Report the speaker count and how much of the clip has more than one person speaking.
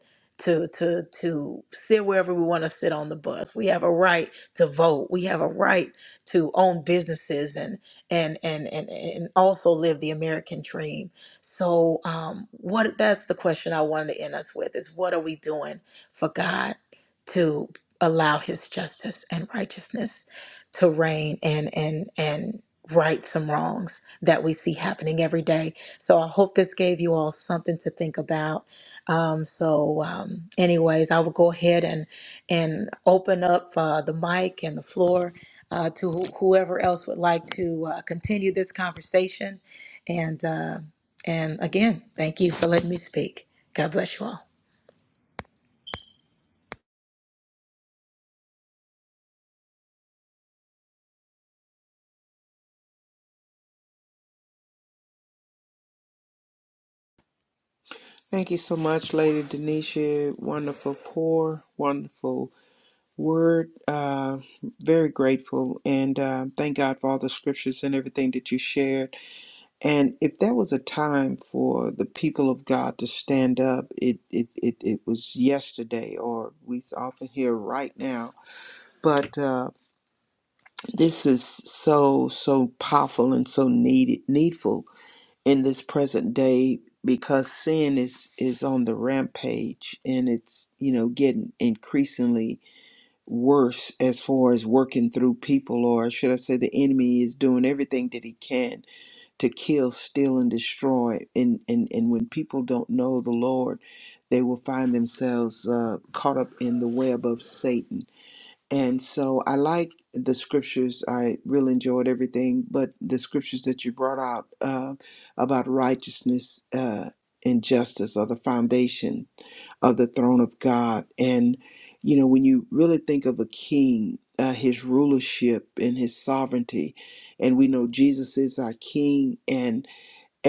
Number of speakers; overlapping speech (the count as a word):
two, no overlap